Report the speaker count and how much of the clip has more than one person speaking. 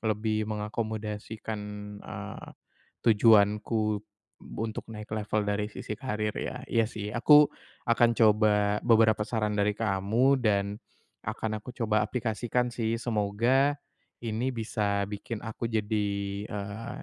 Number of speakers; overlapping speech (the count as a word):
one, no overlap